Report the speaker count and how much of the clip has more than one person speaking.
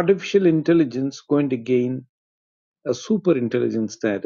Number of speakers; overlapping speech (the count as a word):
one, no overlap